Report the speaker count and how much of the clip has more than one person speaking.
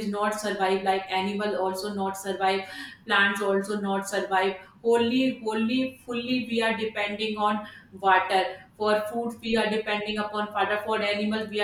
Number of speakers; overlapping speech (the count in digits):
1, no overlap